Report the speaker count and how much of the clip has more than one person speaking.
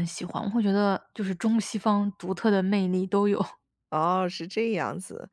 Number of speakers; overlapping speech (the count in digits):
2, no overlap